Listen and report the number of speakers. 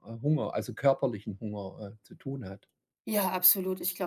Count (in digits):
2